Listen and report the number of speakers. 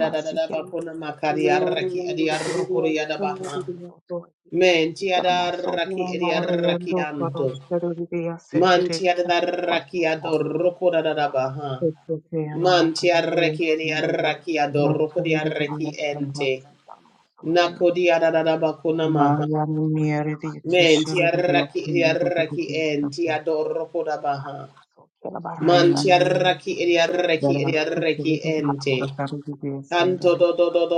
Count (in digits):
3